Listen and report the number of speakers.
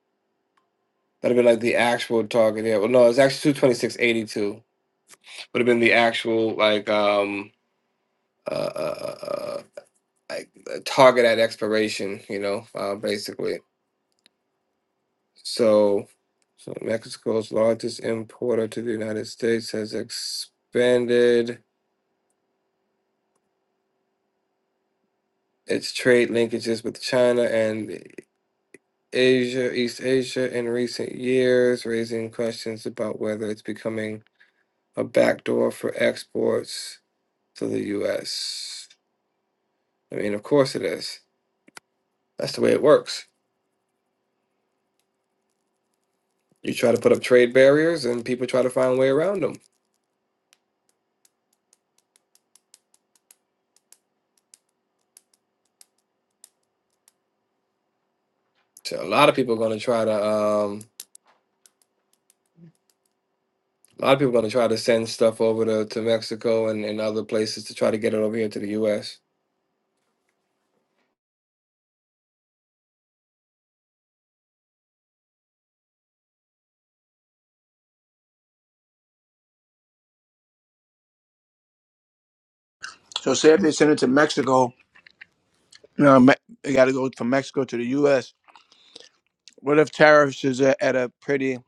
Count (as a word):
two